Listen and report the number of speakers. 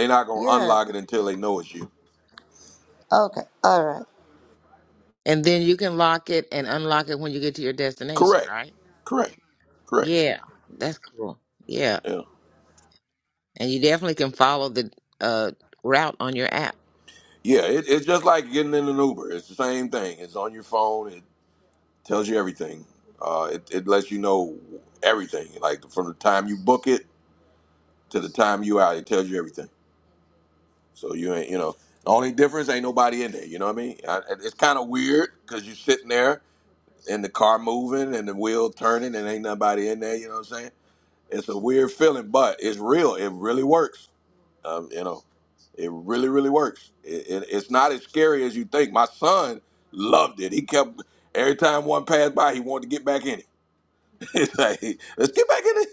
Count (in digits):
3